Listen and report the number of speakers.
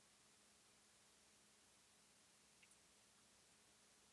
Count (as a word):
zero